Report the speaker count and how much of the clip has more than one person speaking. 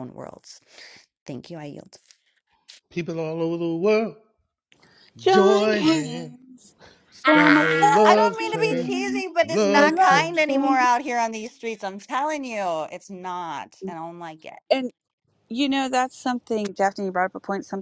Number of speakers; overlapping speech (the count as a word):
three, about 25%